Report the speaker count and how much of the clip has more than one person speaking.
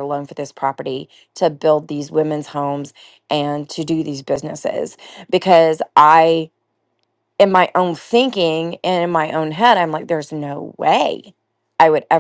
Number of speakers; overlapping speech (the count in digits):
1, no overlap